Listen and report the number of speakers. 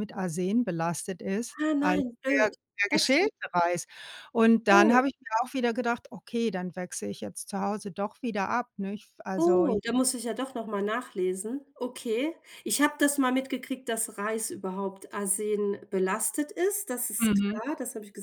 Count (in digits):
2